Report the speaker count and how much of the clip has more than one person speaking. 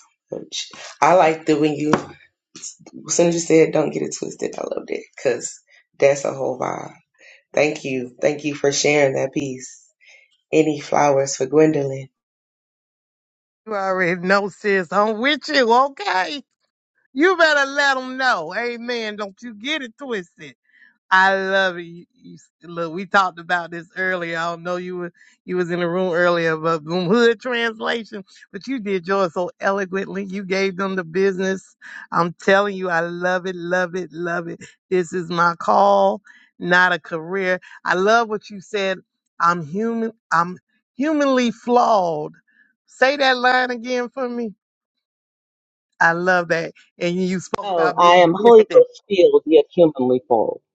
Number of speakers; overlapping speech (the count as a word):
three, about 2%